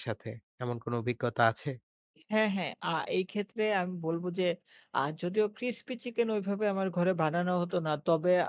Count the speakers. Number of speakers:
2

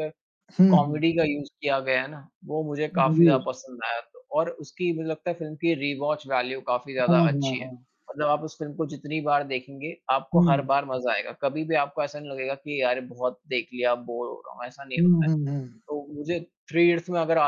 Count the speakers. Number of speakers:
2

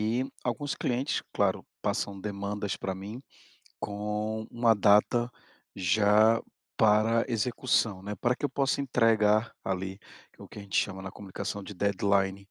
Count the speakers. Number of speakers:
1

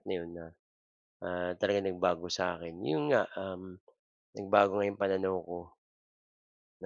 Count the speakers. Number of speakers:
1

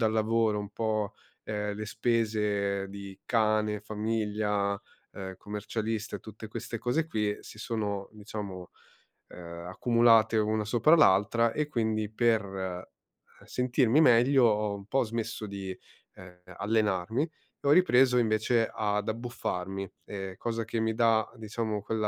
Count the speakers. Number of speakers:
1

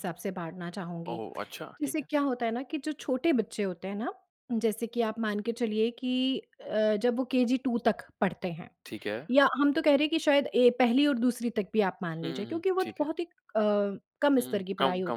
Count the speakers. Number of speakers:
2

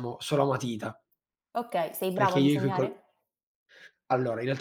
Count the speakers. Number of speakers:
2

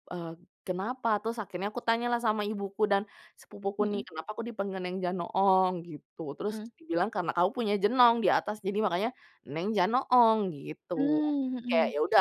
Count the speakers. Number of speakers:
2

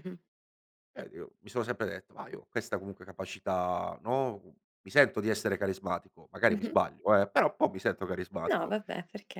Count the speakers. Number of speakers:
2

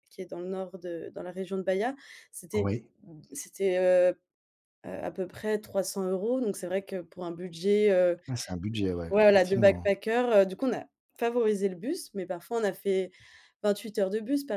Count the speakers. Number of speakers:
2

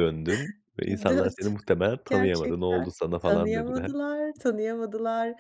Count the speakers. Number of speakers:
2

